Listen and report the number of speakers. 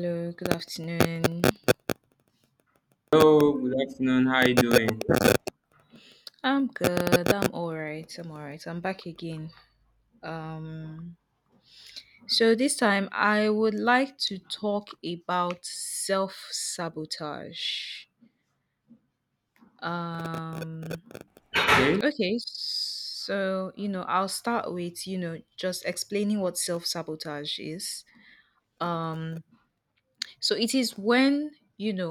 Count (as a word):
two